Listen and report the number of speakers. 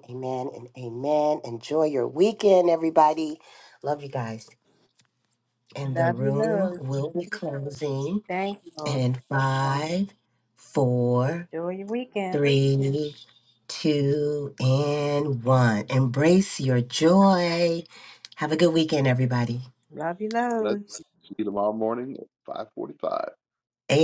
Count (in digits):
3